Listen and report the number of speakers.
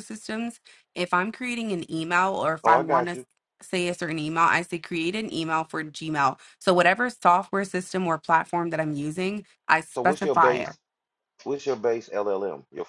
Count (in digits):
2